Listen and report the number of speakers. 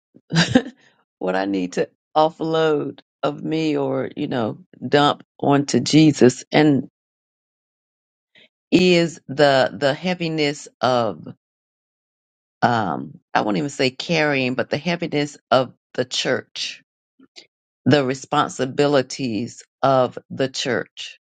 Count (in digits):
1